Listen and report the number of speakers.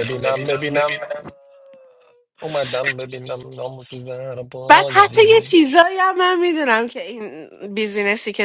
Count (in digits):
2